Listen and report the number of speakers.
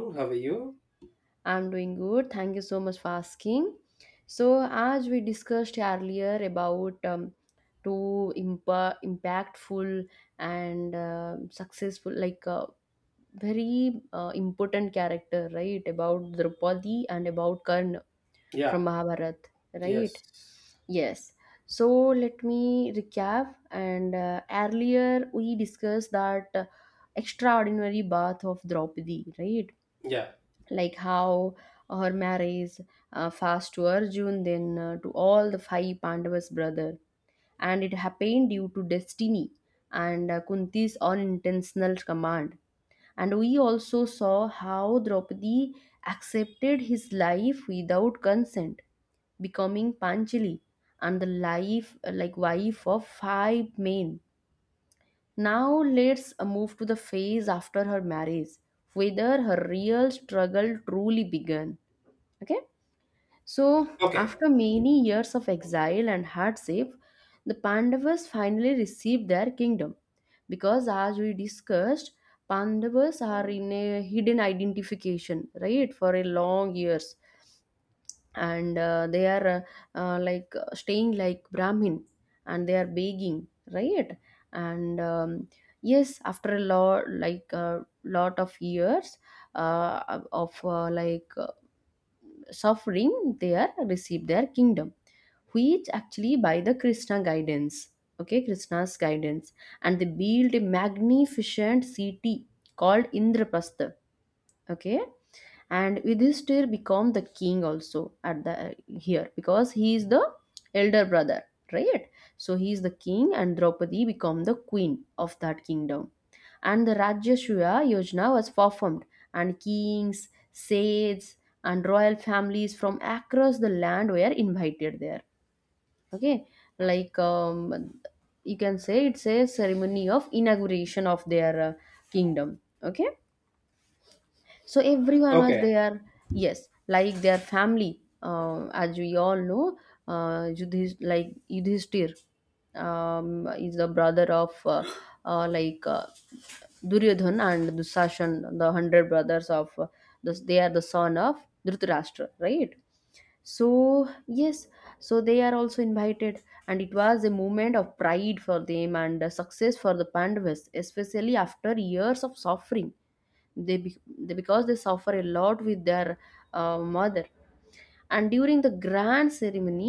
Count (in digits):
2